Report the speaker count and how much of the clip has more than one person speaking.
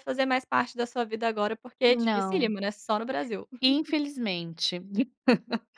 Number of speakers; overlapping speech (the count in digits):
2, about 10%